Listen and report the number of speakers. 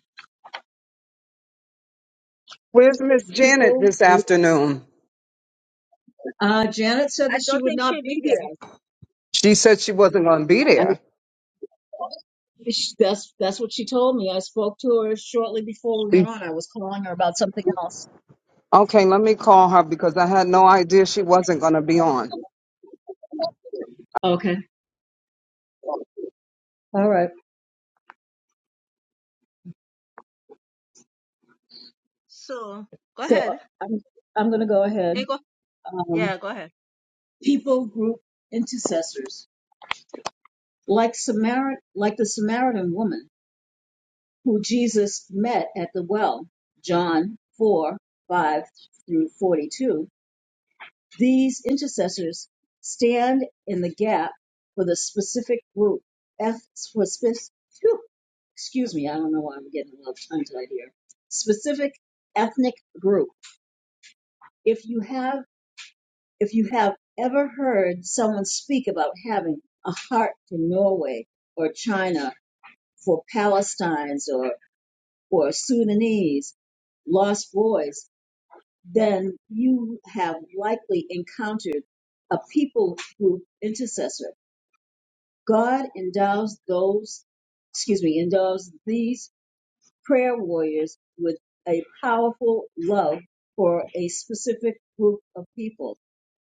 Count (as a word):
three